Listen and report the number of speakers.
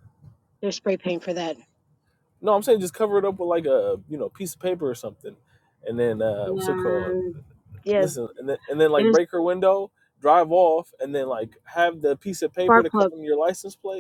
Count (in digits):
2